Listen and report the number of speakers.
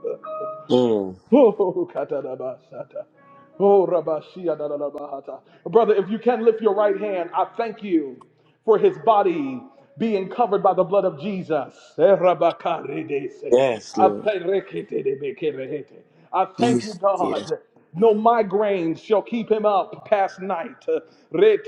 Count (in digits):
2